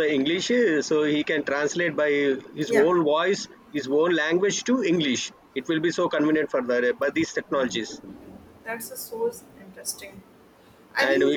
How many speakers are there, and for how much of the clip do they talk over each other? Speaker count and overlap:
2, about 6%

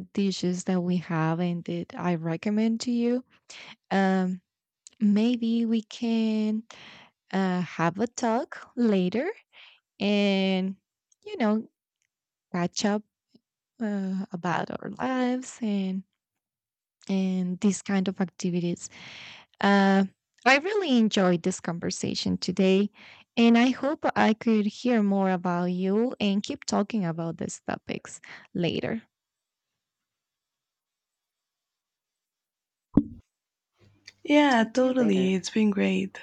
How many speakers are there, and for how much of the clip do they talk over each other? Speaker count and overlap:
2, about 2%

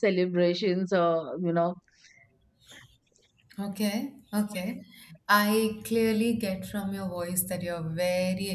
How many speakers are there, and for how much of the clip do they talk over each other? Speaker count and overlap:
2, no overlap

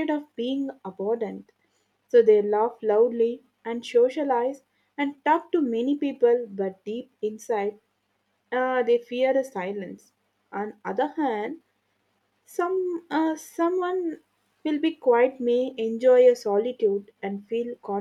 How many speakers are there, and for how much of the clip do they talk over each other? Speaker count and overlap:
1, no overlap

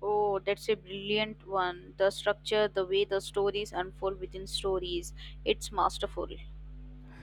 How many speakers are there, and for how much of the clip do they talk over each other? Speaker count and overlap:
1, no overlap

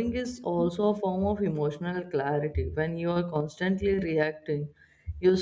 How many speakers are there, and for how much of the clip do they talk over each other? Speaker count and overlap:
1, no overlap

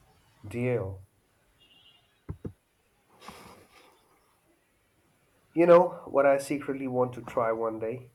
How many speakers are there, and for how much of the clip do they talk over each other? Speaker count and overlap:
1, no overlap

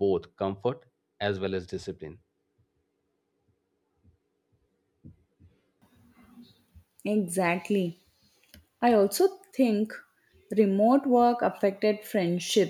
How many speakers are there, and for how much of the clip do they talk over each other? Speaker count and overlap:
2, no overlap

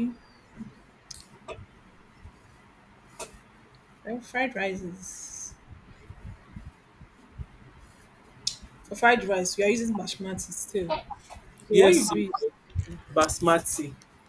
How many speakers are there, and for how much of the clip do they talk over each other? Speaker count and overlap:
2, about 3%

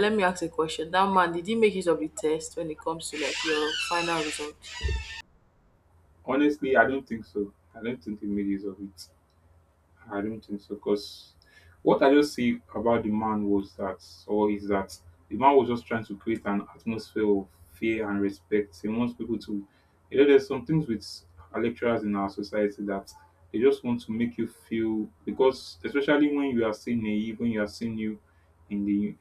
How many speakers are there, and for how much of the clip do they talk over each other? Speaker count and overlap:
2, no overlap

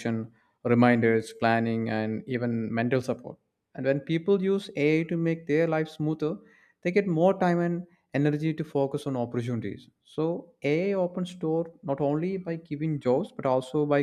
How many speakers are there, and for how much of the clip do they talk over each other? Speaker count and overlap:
1, no overlap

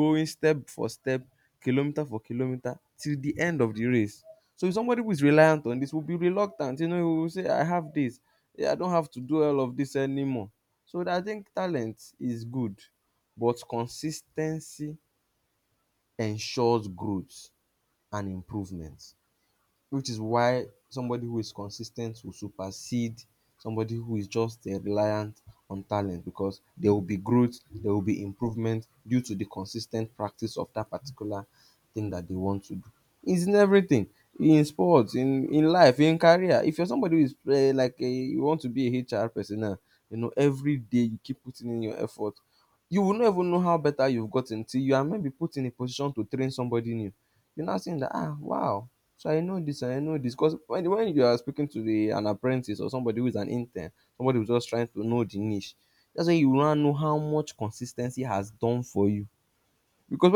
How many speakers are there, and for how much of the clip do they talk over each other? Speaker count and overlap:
1, no overlap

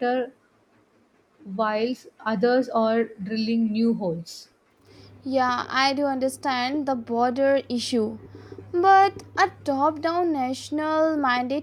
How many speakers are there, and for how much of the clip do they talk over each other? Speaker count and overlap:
2, no overlap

